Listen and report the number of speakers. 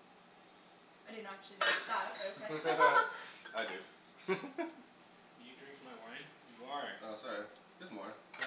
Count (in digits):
3